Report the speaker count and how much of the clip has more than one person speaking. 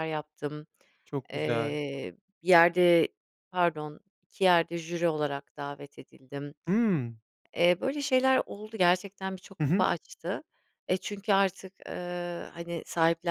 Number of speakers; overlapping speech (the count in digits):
2, about 5%